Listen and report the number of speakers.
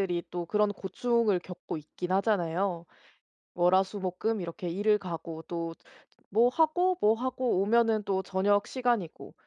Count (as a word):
one